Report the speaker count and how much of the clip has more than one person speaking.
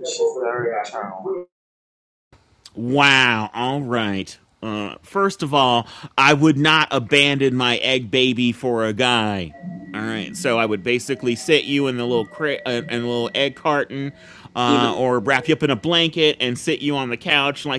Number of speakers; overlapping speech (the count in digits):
2, about 2%